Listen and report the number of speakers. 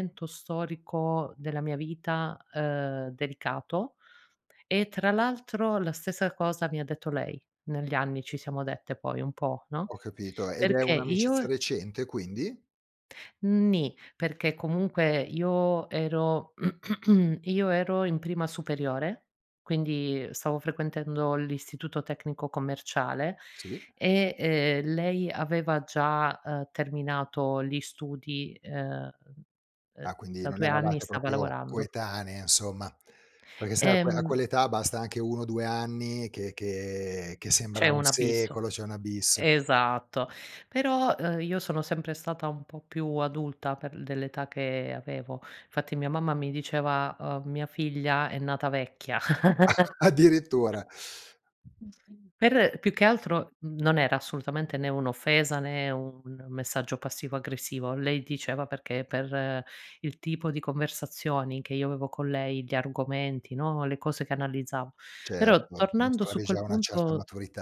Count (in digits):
2